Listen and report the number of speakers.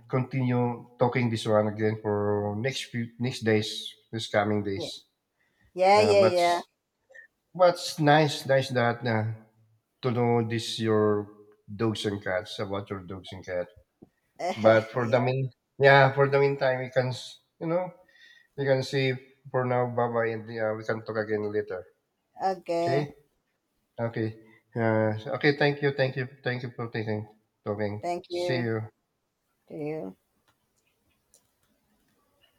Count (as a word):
two